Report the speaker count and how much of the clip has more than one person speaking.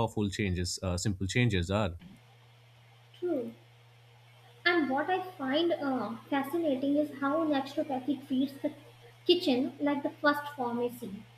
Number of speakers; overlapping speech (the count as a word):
two, no overlap